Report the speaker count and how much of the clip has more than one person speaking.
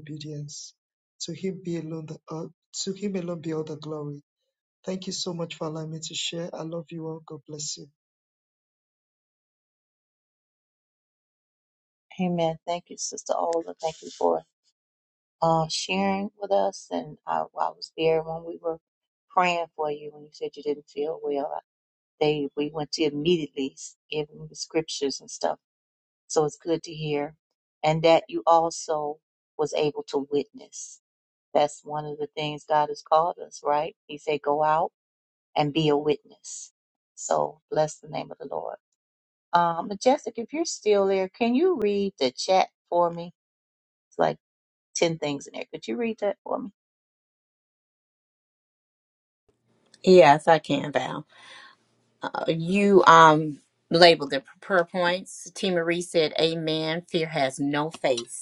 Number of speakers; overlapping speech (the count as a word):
three, no overlap